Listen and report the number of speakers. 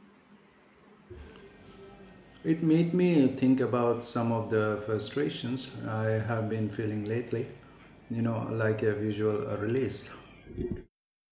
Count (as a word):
one